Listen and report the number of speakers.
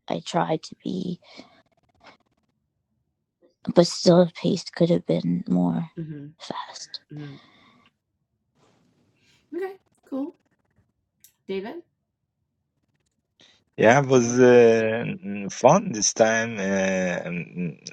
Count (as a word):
three